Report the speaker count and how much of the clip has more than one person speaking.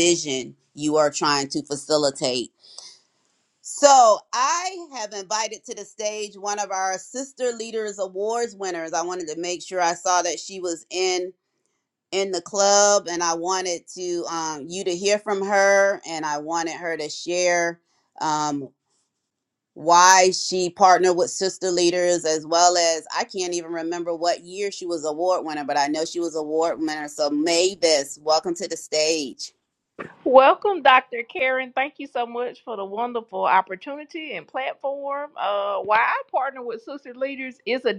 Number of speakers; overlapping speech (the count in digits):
2, no overlap